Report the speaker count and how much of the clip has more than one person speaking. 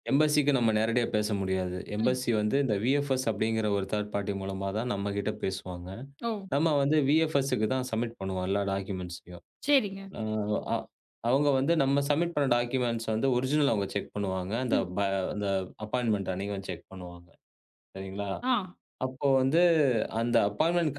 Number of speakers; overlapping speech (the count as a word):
two, about 2%